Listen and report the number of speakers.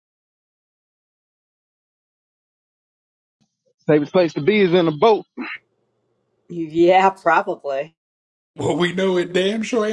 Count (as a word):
three